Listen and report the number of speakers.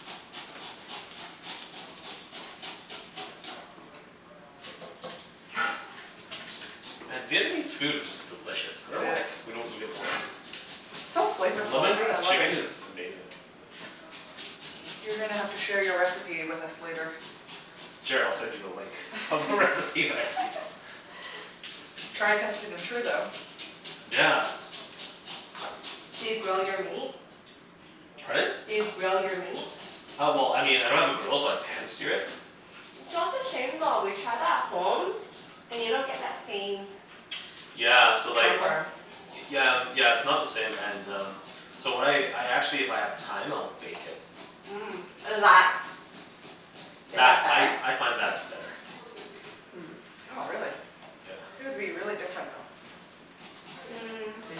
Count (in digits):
3